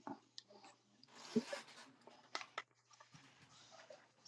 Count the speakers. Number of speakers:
zero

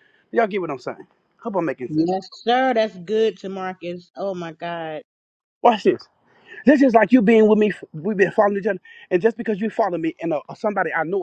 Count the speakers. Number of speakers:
two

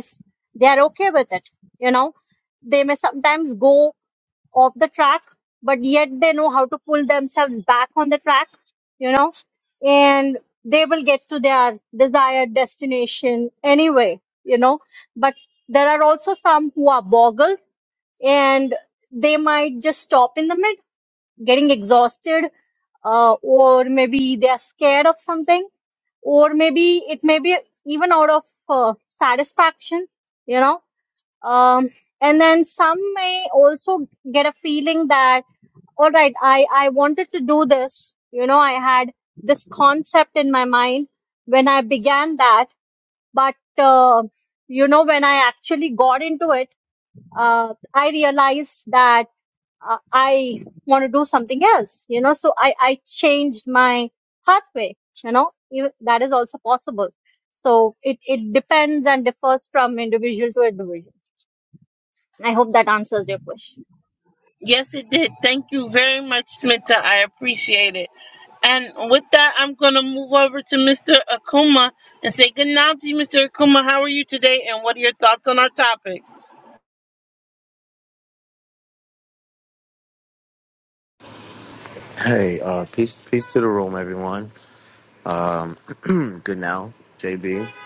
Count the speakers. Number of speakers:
three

